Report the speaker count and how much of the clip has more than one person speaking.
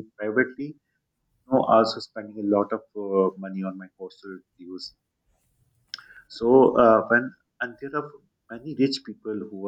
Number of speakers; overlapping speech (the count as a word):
one, no overlap